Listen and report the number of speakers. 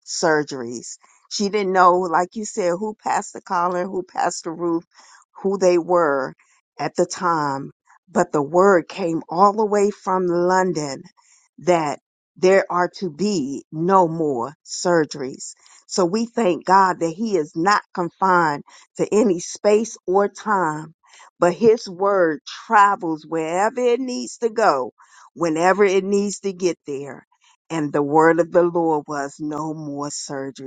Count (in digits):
1